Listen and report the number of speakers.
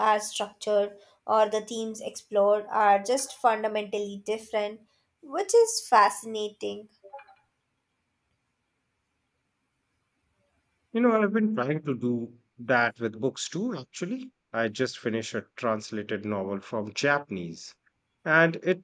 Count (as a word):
two